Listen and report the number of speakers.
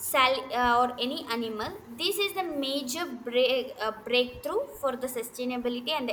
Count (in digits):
1